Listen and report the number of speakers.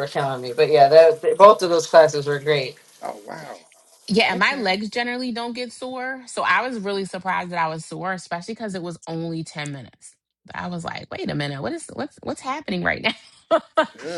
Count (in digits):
3